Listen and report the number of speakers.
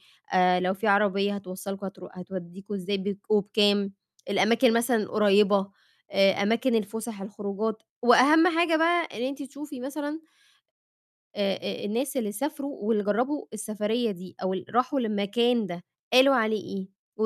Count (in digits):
1